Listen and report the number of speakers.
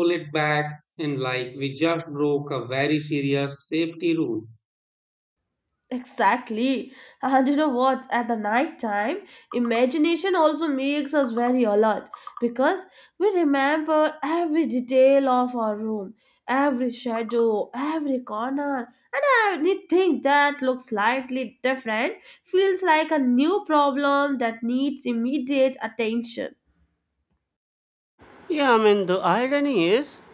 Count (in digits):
3